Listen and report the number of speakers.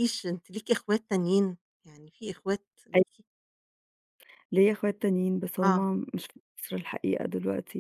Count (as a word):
two